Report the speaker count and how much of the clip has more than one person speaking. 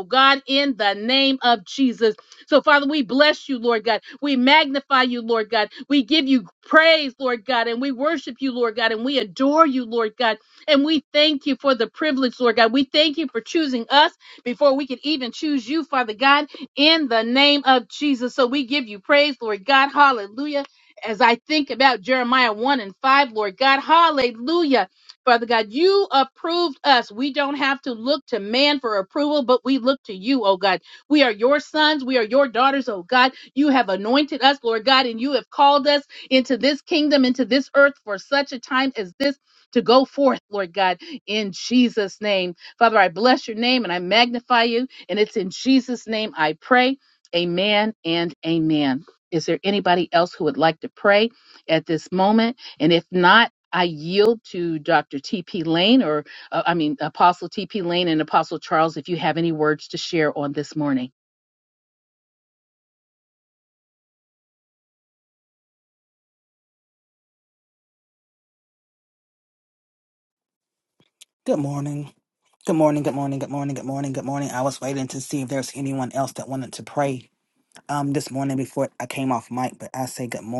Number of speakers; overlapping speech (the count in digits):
2, no overlap